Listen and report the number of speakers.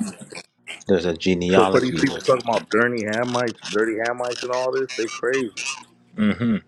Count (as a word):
two